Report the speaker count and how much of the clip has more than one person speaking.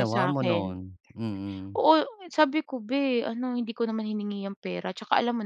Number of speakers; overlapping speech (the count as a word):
two, about 14%